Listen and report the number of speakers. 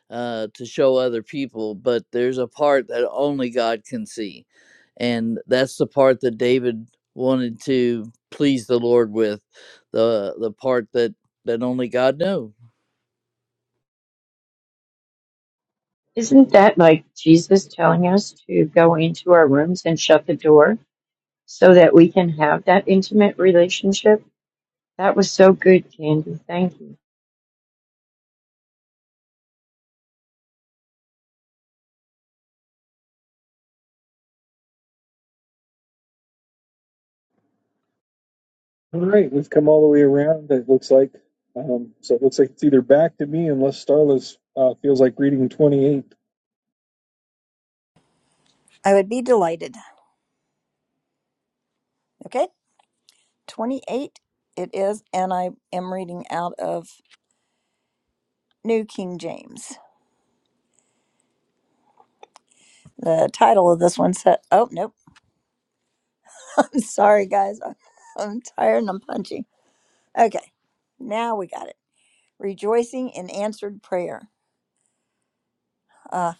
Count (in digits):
4